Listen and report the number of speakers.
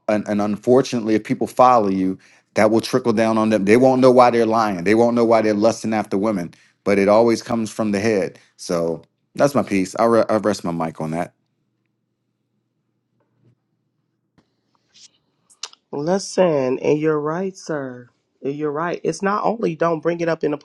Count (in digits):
2